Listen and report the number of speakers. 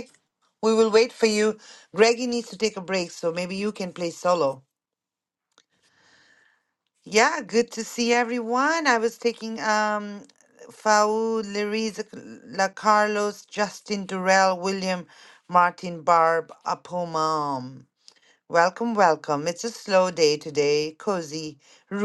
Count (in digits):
1